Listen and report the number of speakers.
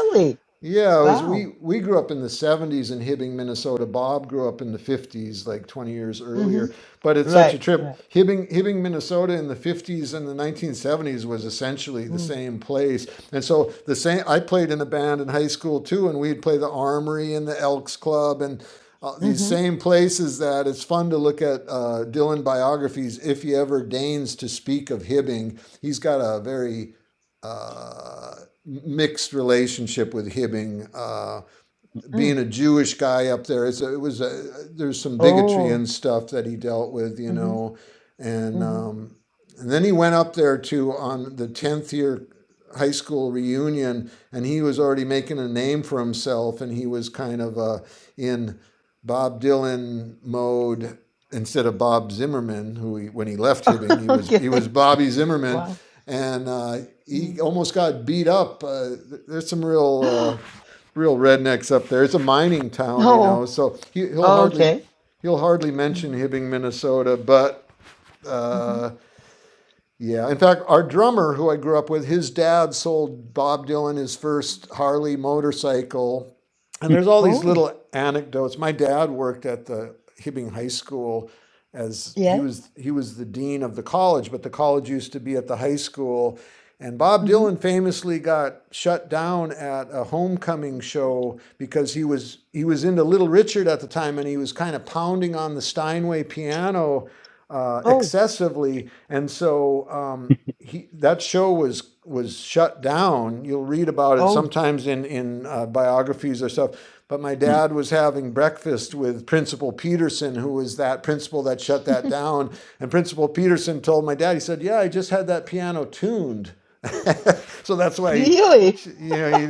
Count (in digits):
2